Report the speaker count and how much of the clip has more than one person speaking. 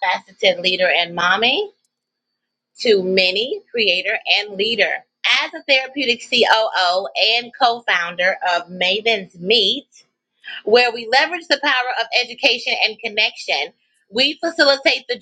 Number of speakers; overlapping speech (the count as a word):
one, no overlap